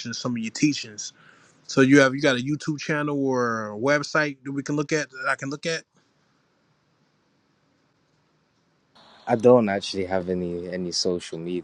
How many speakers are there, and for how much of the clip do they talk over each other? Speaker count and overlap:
2, no overlap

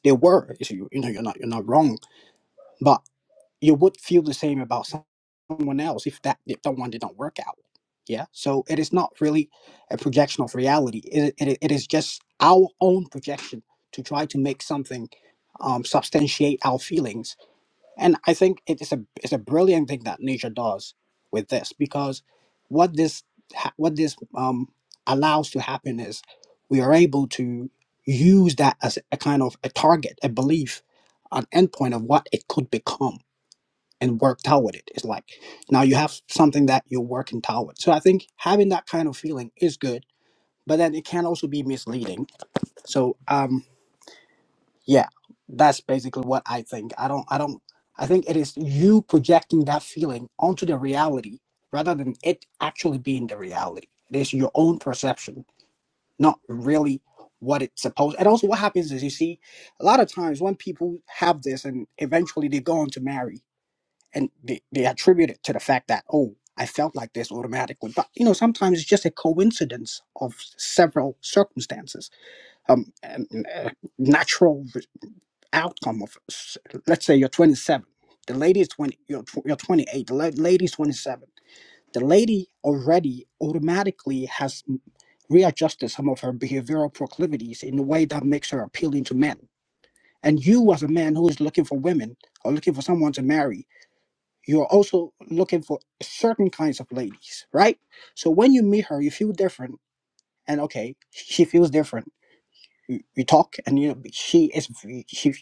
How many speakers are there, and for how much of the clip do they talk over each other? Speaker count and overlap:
1, no overlap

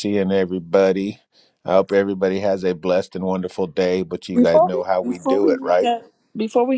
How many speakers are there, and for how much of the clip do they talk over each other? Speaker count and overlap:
2, about 23%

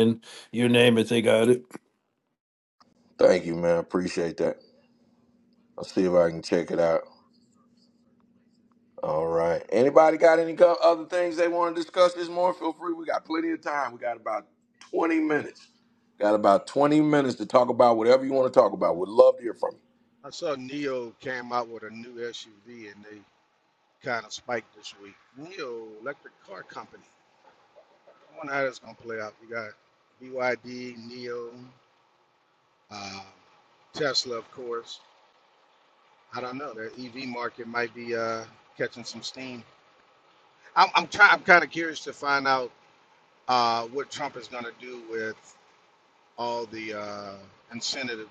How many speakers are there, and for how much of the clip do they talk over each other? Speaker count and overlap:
3, no overlap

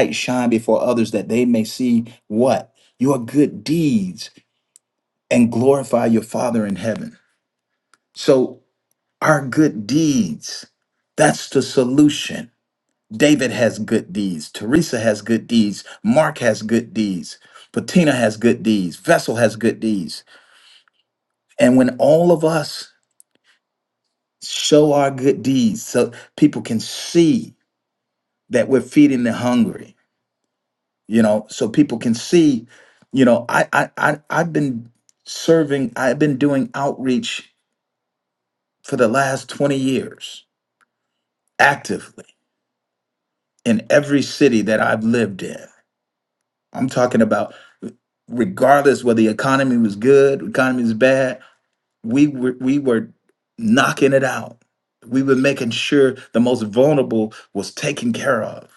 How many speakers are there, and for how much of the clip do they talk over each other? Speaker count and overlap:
1, no overlap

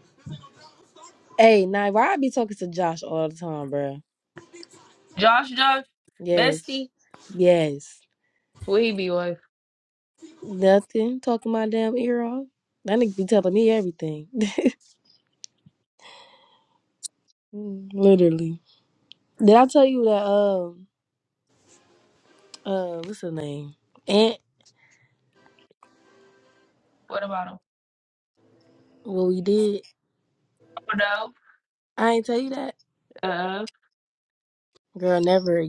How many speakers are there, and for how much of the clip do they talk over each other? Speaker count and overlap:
2, about 1%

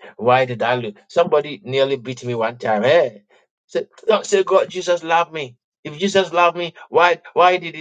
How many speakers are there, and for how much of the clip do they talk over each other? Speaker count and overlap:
1, no overlap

